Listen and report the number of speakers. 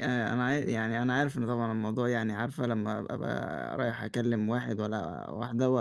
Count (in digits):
1